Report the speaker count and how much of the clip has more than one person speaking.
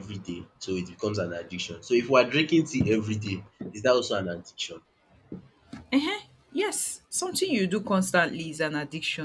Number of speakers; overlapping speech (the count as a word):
two, no overlap